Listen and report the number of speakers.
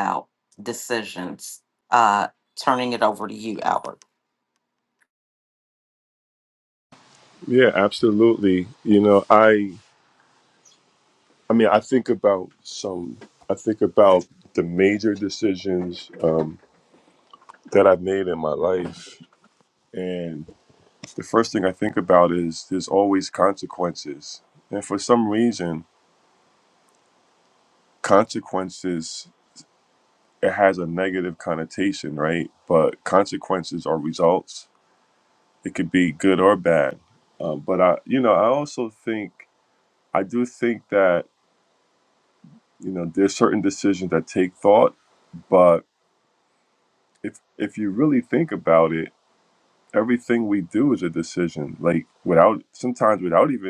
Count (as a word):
two